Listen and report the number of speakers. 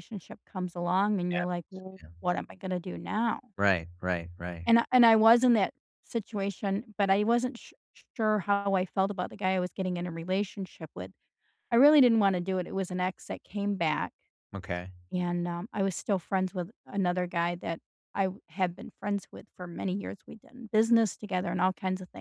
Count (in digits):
2